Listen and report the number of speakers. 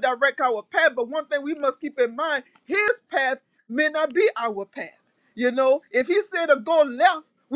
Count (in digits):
1